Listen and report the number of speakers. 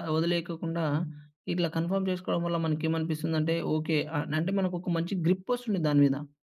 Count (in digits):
1